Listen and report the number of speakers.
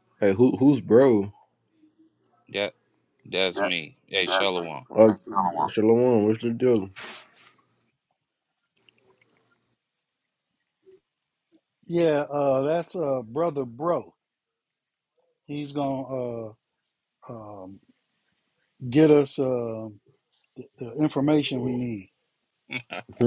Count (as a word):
three